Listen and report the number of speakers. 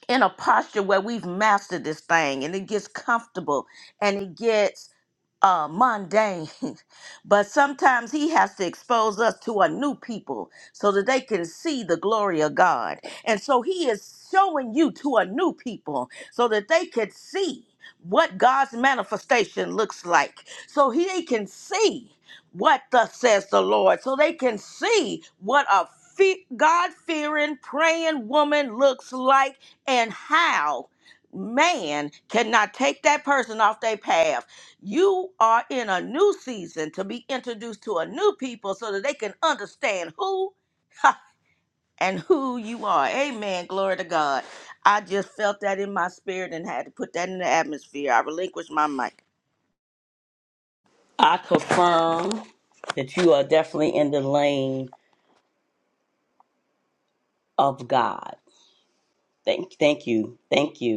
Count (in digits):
2